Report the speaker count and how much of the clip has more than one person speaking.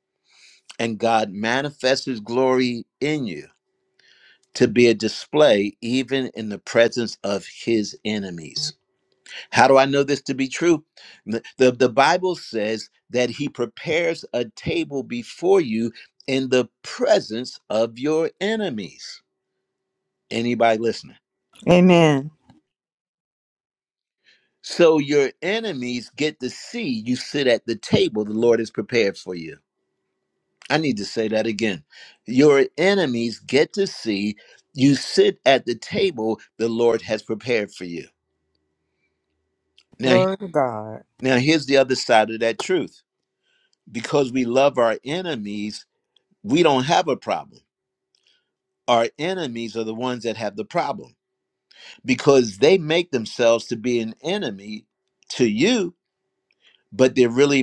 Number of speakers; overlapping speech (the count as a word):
two, under 1%